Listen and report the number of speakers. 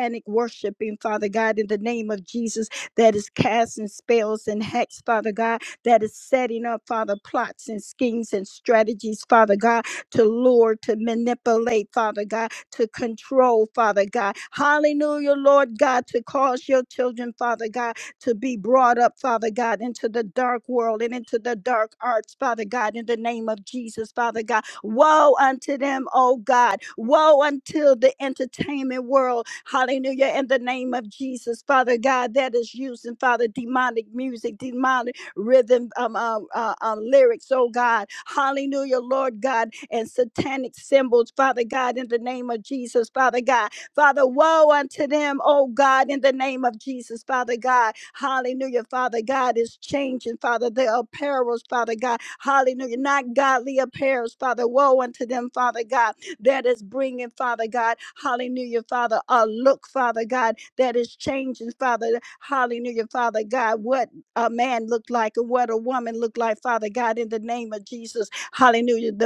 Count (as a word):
one